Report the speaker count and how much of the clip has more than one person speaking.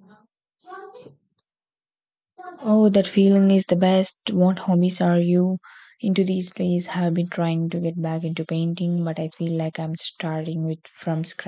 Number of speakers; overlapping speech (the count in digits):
1, no overlap